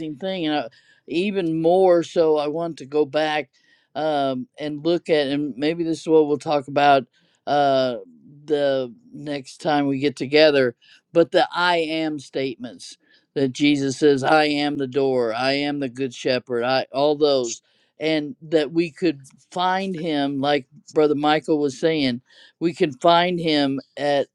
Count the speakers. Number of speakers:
one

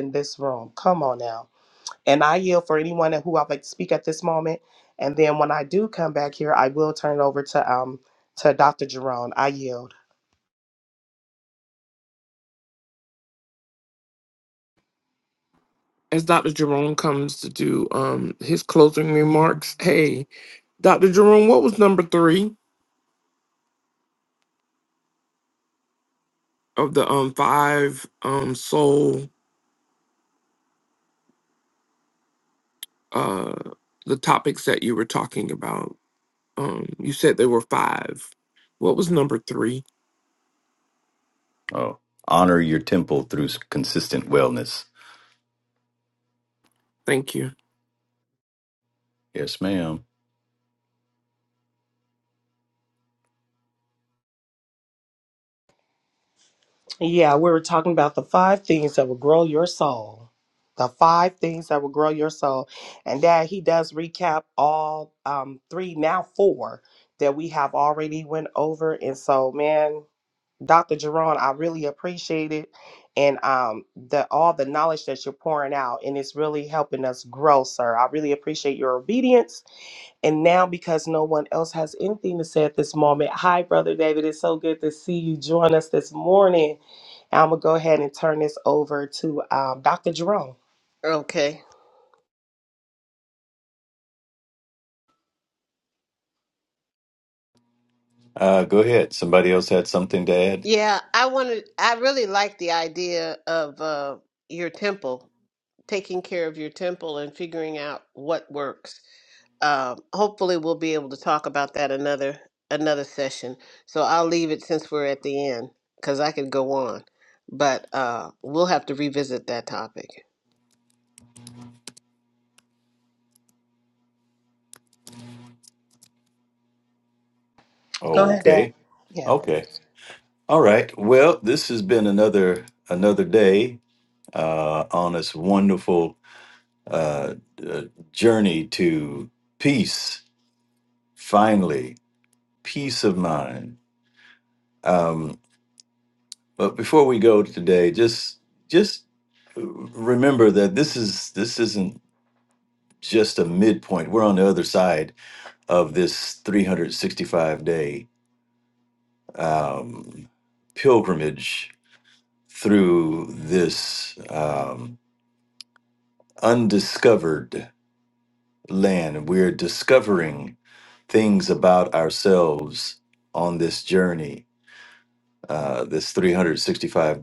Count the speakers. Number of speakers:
four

